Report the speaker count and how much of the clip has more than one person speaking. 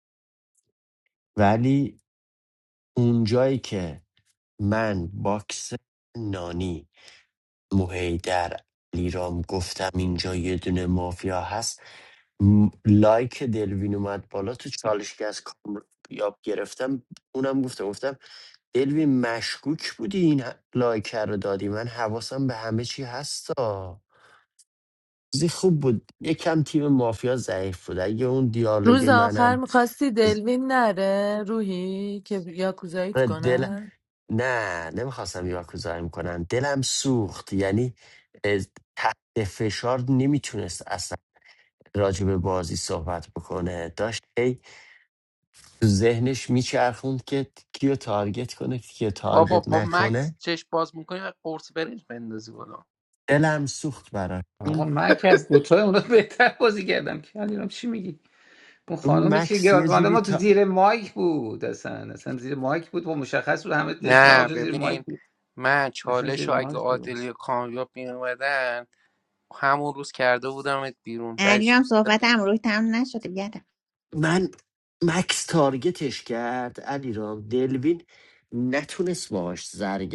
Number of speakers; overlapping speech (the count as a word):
five, about 8%